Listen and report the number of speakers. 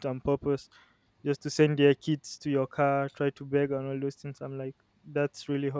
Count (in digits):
1